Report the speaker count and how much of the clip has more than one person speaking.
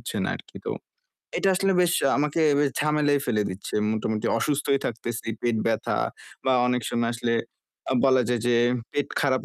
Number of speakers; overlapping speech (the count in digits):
1, no overlap